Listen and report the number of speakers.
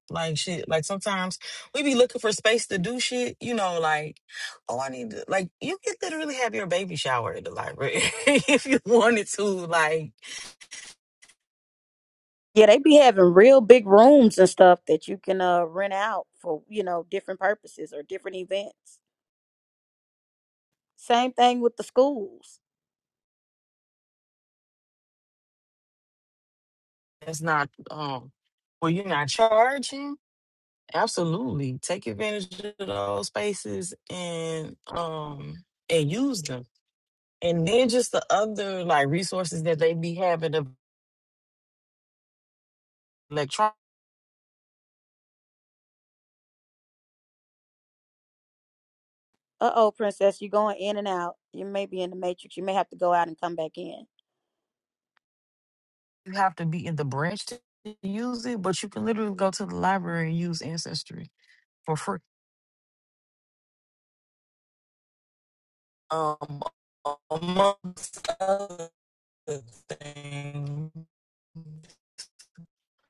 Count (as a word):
two